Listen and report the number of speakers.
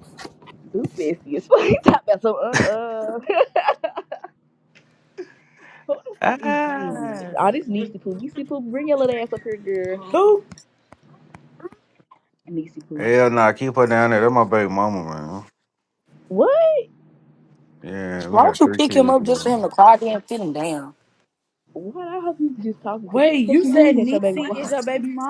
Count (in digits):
4